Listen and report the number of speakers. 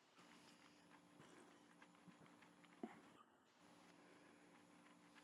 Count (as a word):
zero